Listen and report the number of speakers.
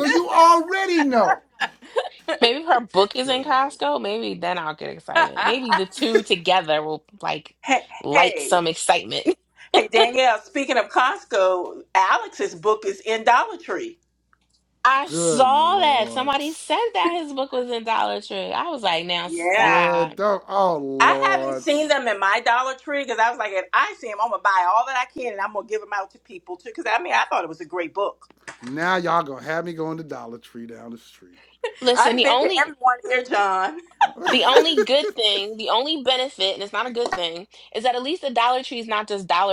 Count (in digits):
3